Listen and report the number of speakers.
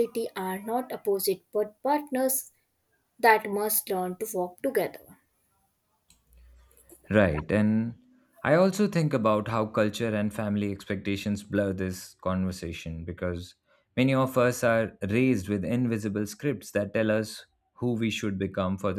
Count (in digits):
2